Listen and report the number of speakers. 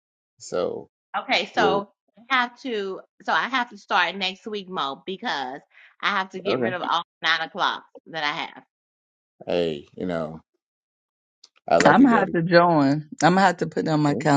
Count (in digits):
3